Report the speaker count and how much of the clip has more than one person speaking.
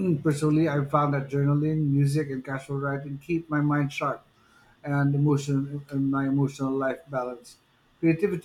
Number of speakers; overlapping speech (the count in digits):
1, no overlap